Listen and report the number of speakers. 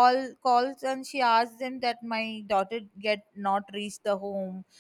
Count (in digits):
1